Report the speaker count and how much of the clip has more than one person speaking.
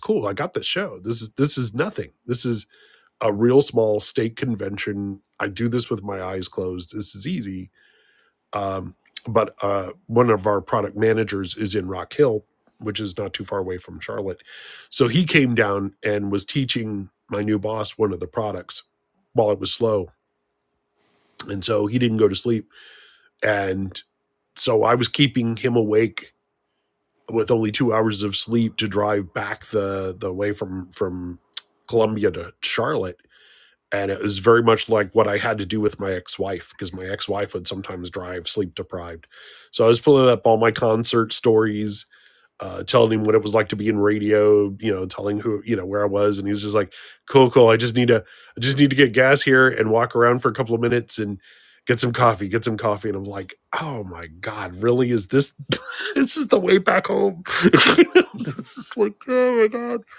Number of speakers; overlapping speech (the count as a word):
one, no overlap